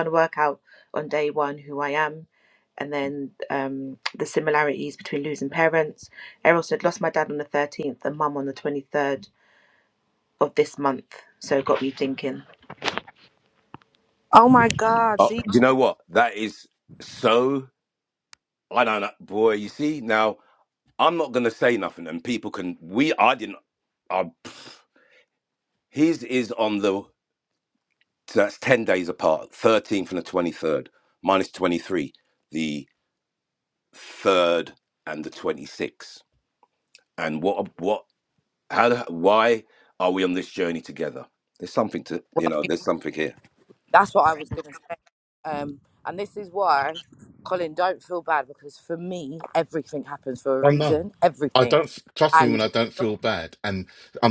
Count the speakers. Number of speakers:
four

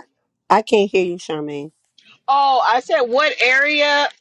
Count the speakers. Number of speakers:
two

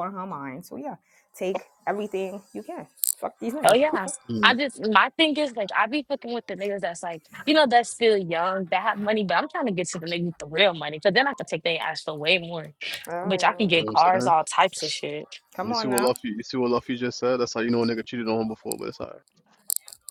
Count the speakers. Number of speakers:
three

